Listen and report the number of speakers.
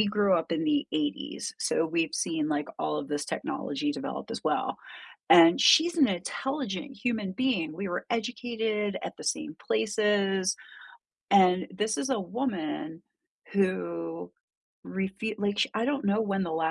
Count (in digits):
1